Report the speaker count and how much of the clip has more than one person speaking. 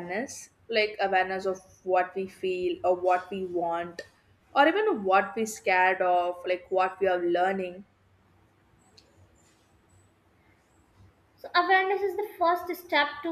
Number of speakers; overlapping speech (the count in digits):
2, no overlap